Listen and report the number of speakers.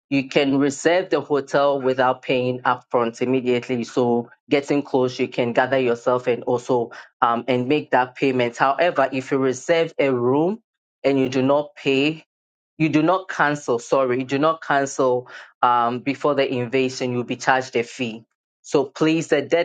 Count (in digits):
1